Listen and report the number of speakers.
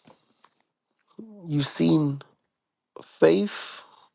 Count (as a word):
one